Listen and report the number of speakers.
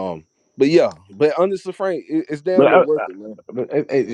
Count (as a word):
two